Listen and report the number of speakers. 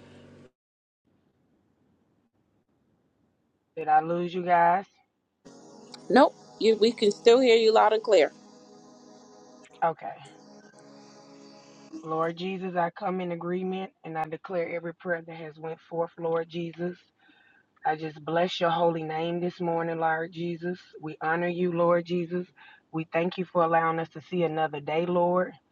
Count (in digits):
2